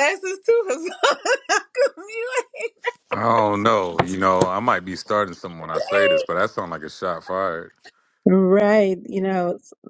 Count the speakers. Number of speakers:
3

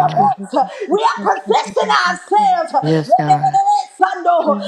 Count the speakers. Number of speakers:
3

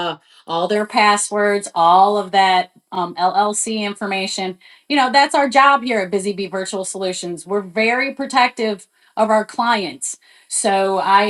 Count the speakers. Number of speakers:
1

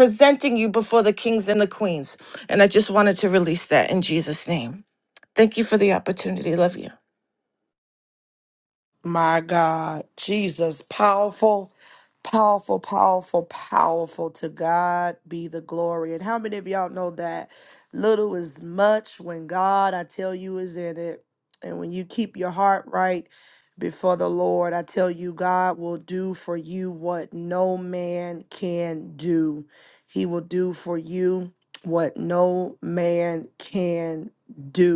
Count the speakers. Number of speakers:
2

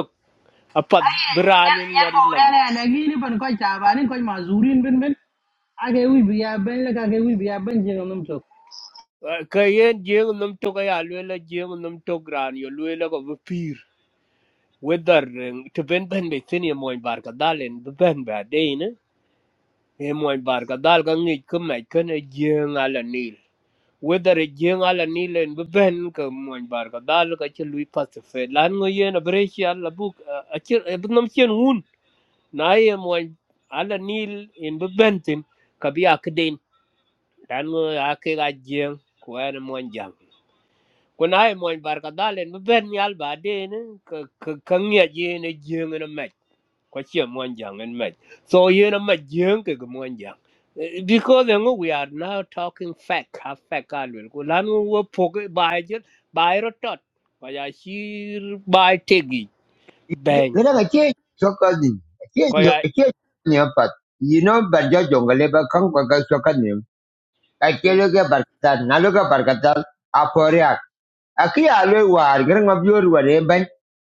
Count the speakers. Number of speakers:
3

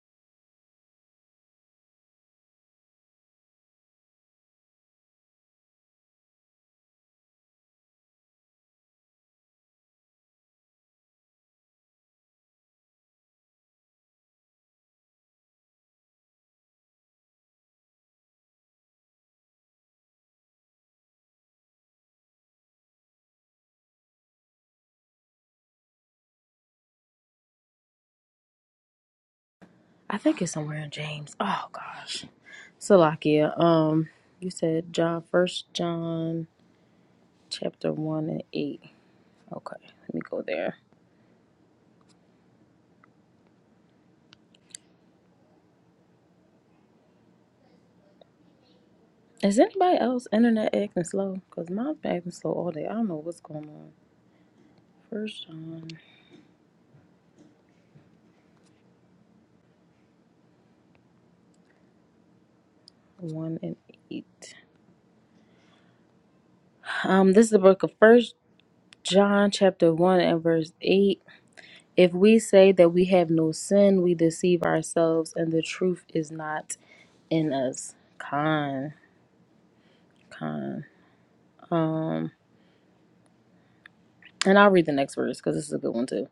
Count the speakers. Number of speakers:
1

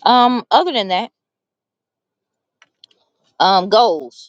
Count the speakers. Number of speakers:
1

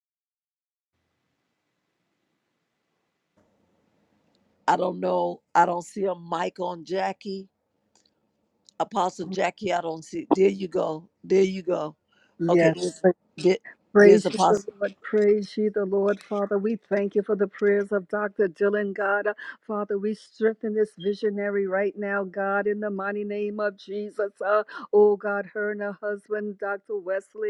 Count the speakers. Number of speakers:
2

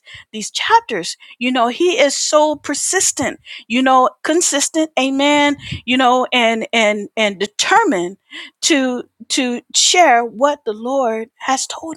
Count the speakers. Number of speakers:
1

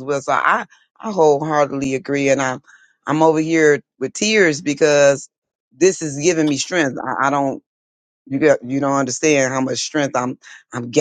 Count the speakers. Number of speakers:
1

